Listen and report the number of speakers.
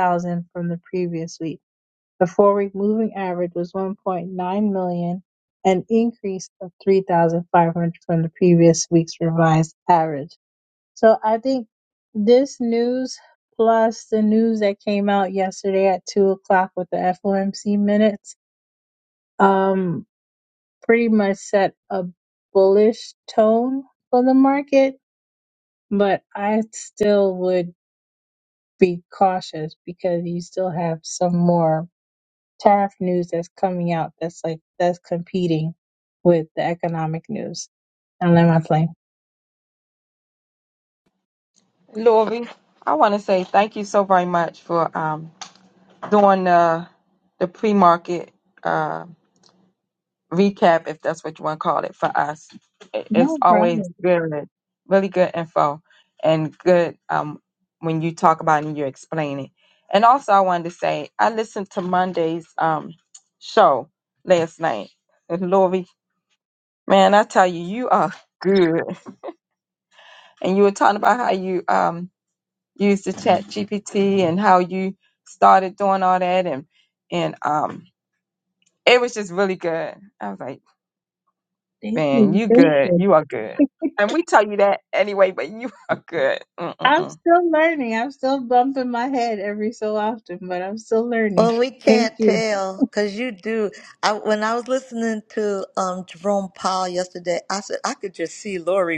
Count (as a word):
three